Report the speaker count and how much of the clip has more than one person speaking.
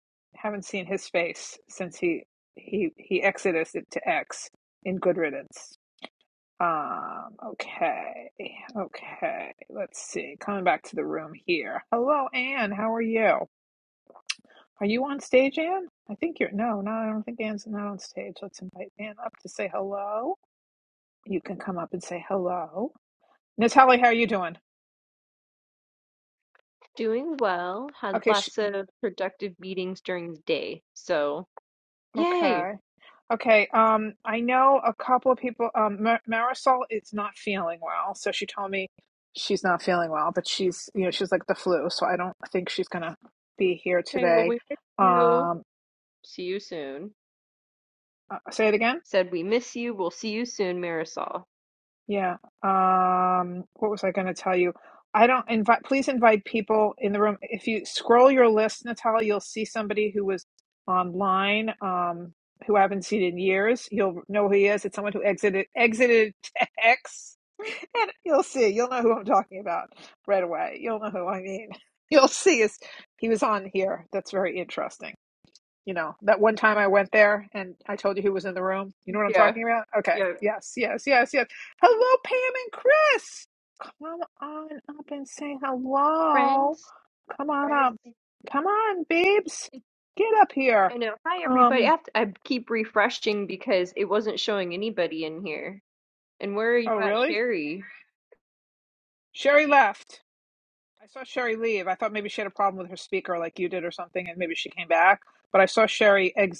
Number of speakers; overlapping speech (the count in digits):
2, about 4%